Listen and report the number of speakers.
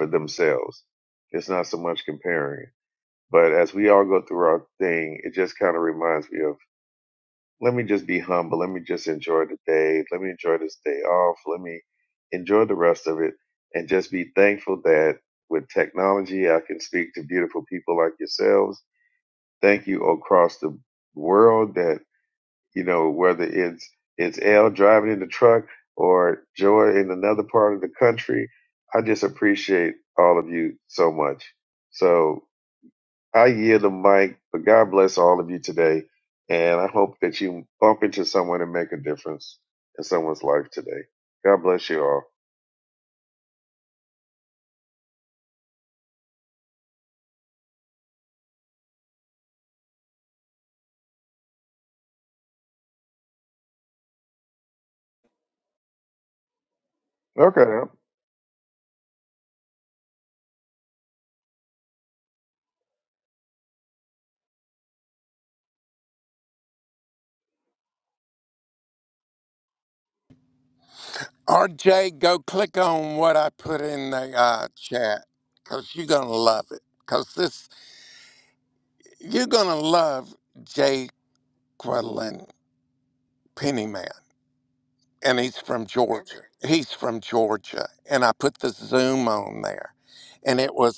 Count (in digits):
2